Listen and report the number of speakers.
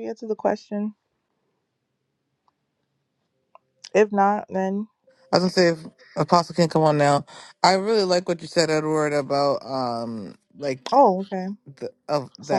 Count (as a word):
two